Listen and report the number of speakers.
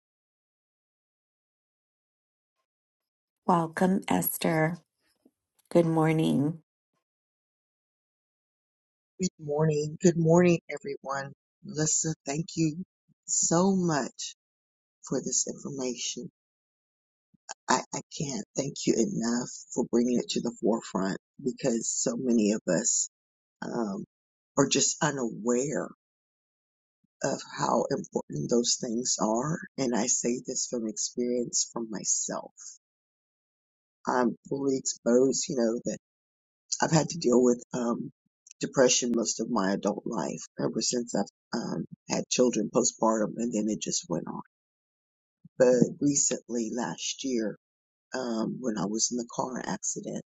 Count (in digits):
2